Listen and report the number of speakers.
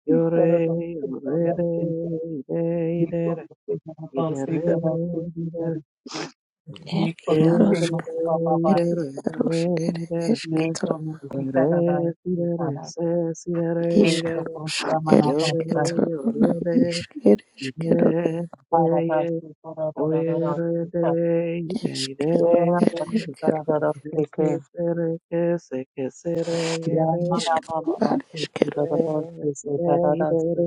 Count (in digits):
3